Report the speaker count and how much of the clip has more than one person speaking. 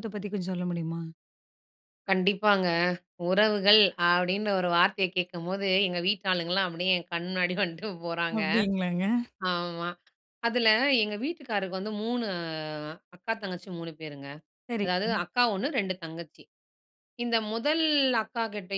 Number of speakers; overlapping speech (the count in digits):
2, about 1%